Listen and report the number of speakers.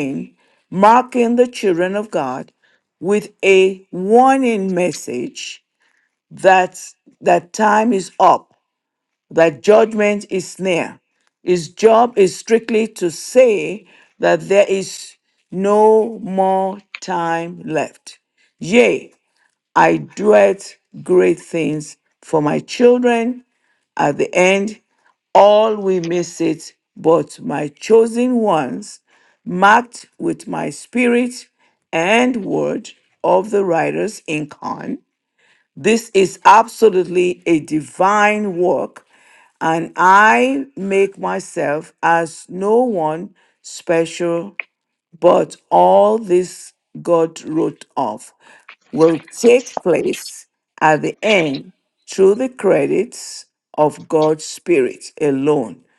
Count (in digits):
1